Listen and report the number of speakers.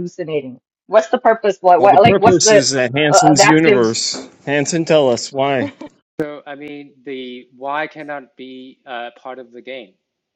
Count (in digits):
3